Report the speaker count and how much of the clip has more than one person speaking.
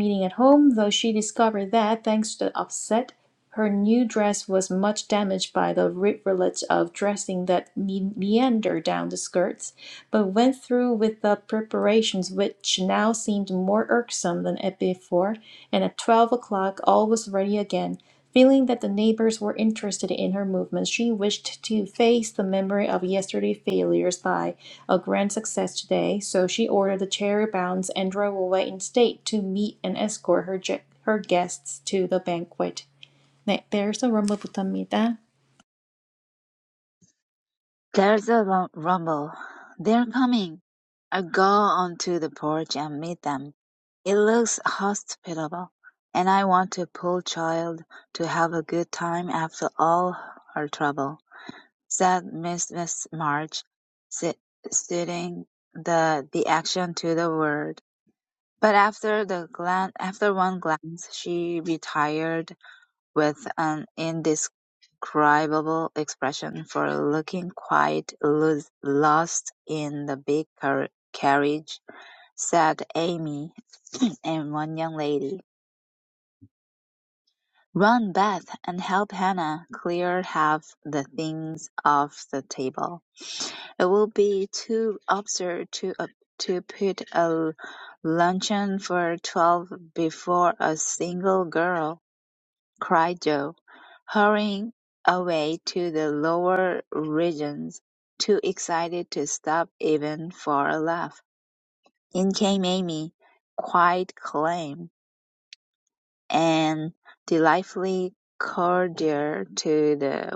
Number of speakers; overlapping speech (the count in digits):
2, no overlap